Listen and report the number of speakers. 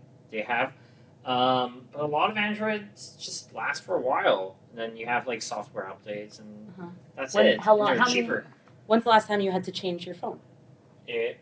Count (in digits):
2